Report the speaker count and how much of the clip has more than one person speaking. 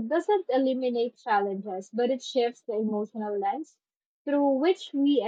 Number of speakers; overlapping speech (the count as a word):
one, no overlap